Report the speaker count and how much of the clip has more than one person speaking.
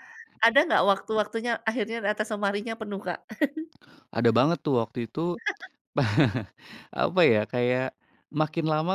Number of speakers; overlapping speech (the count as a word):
two, no overlap